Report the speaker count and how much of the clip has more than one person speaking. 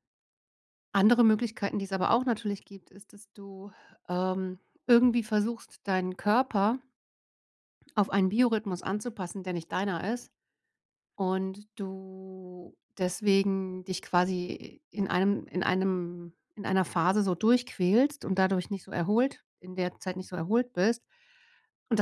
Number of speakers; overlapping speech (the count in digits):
1, no overlap